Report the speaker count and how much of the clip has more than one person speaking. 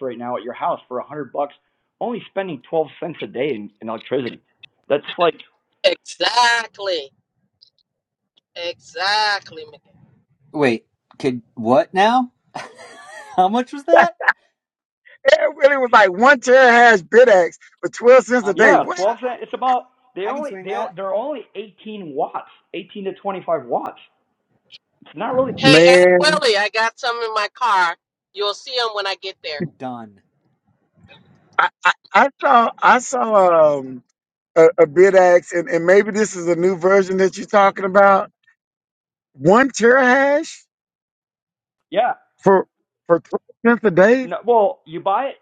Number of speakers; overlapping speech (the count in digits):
4, about 5%